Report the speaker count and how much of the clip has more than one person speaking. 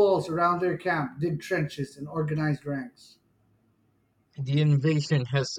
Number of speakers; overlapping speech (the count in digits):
2, no overlap